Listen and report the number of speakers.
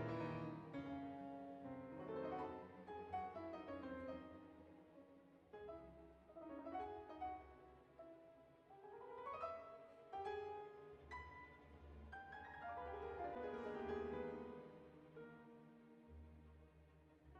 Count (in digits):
0